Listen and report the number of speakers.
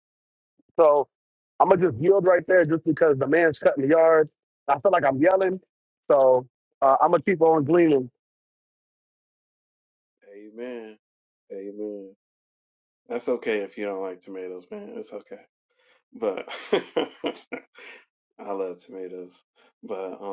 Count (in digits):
2